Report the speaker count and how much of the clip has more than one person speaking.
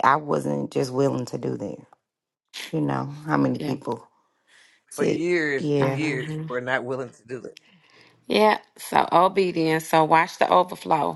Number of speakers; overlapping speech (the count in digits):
3, about 12%